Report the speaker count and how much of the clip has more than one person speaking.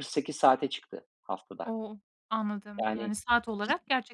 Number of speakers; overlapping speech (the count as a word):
two, about 12%